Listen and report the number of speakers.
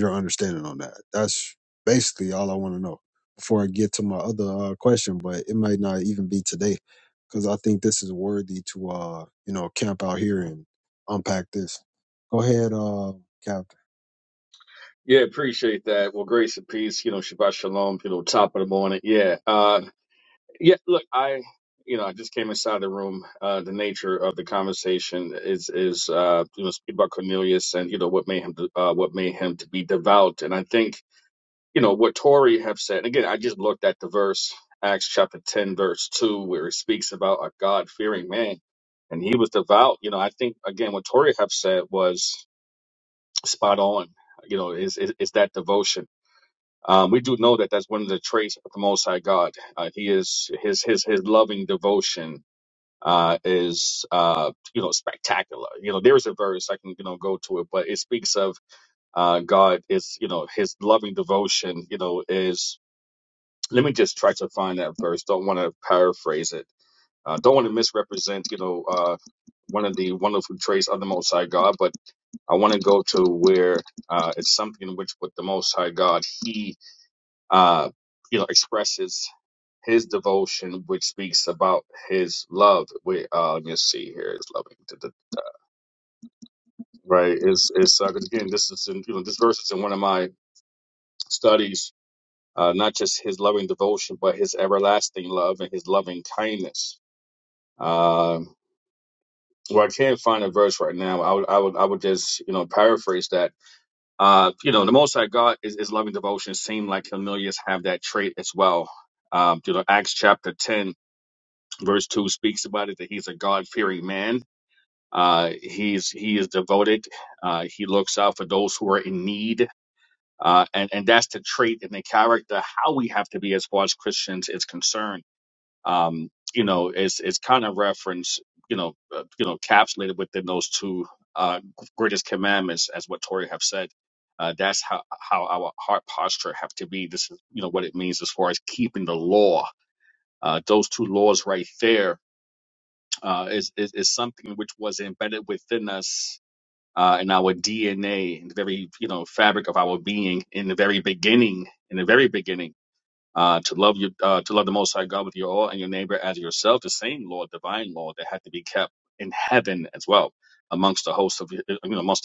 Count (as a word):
two